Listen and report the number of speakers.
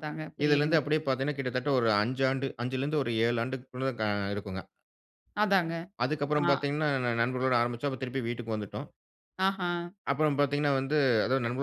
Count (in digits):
2